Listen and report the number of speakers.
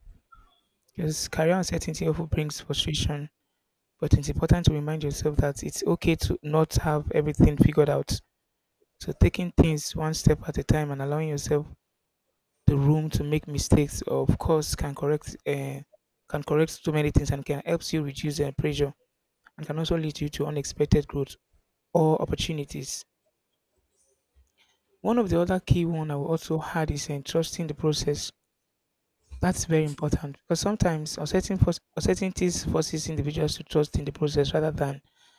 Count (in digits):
1